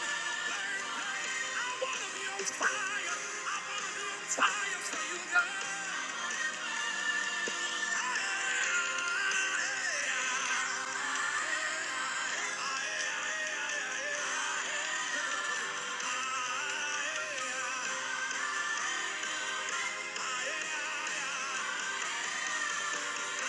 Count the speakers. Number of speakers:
0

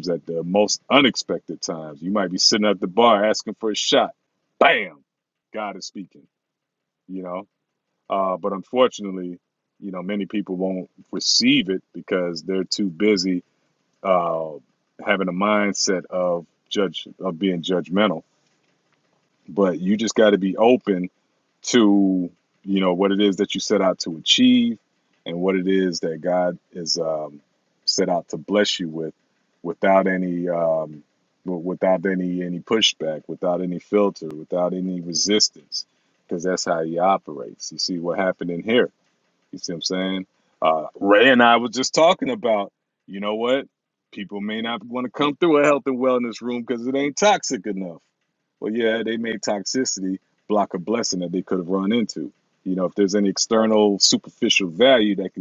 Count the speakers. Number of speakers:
1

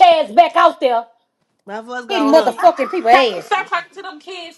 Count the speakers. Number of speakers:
3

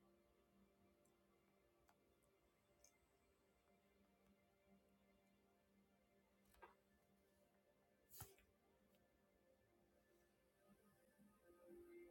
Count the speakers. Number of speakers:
0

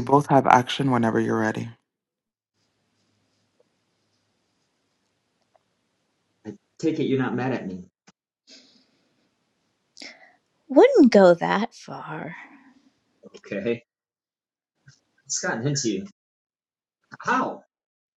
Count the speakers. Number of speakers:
3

